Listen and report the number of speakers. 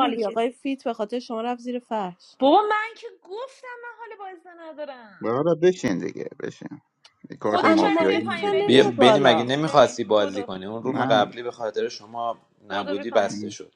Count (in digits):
4